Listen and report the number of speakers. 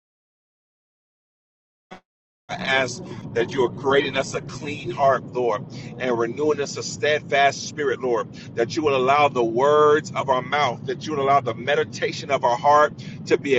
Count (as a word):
one